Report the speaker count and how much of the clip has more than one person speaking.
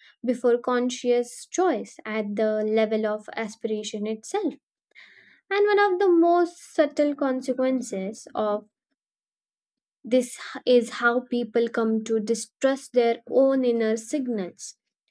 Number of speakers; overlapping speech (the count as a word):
one, no overlap